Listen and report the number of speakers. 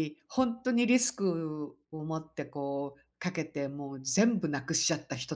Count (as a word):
one